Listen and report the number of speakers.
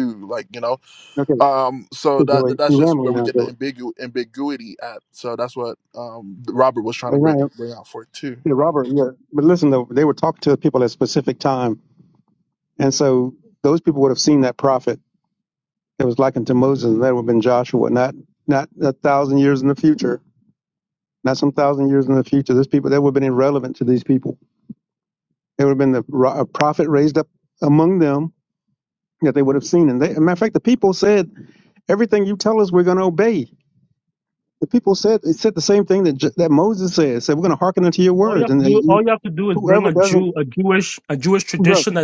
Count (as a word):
three